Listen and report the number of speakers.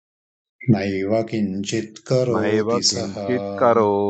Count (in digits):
2